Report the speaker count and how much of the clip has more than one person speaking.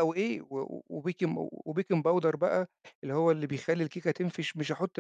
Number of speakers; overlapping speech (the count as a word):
one, no overlap